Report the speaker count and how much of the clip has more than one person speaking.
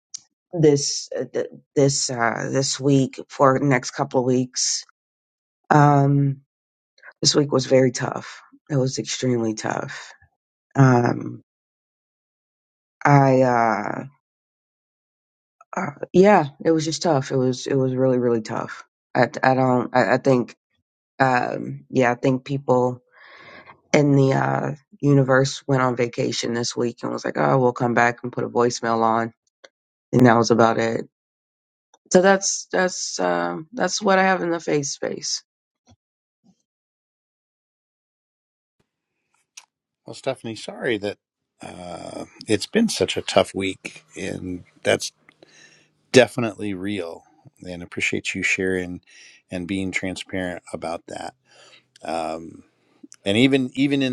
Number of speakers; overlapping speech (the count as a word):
two, no overlap